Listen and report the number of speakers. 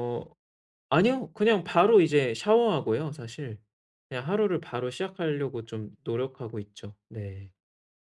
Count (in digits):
1